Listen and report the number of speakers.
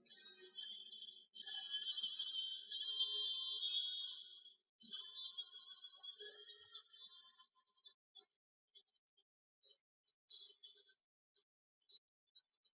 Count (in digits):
0